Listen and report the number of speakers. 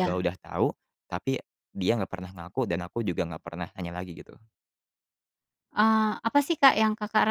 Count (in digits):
2